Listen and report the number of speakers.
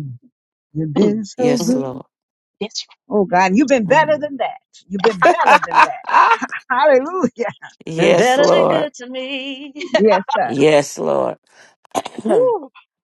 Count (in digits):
3